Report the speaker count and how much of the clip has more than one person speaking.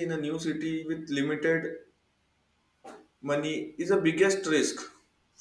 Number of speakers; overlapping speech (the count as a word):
one, no overlap